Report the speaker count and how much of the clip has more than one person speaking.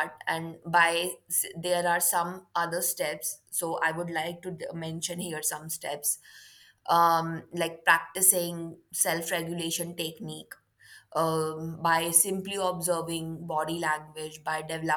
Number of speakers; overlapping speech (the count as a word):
one, no overlap